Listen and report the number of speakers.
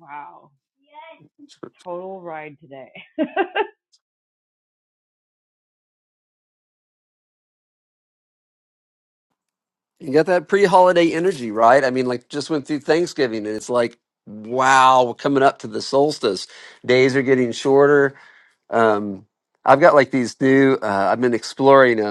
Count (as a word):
two